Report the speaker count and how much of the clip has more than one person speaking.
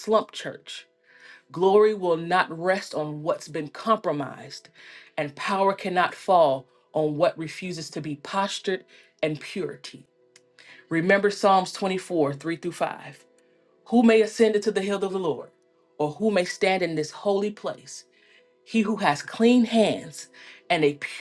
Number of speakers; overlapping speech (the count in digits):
1, no overlap